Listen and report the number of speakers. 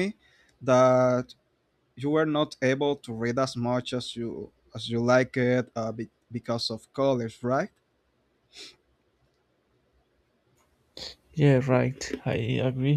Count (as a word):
two